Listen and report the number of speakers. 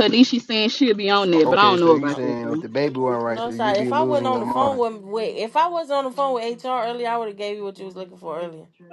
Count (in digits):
3